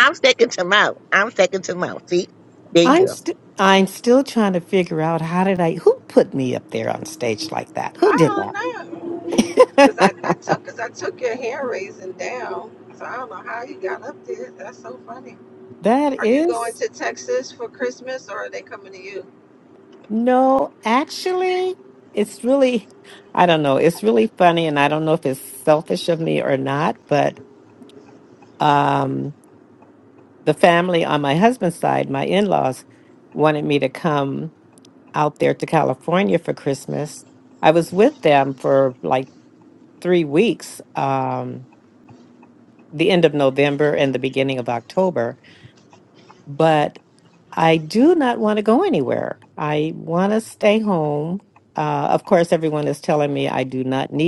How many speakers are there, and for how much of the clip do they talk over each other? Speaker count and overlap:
3, about 3%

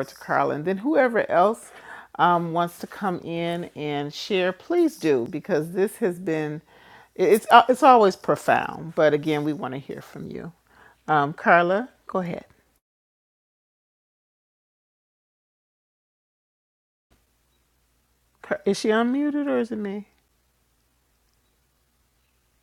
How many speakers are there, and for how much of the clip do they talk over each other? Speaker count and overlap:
1, no overlap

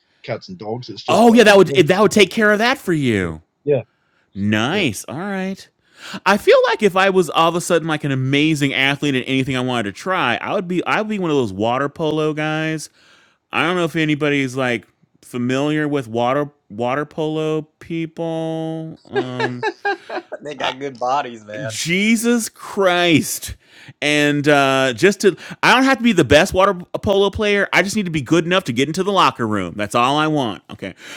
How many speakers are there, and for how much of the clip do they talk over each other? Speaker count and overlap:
3, about 5%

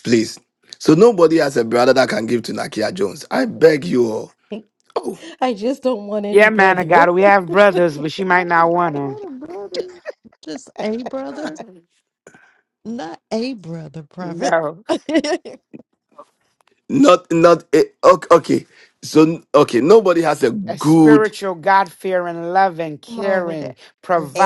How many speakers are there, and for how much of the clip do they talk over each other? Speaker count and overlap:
4, about 11%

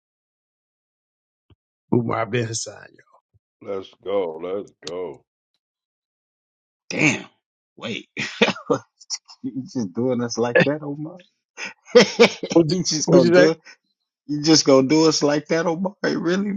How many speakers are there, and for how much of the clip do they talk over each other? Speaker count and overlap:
3, about 5%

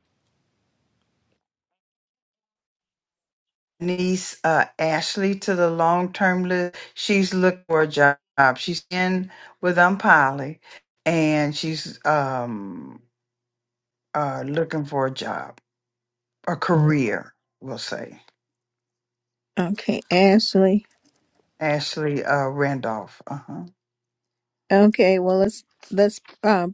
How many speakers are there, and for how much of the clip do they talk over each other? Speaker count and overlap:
2, no overlap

